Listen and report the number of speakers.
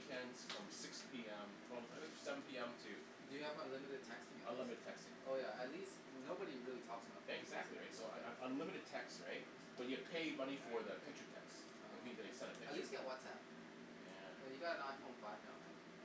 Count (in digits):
2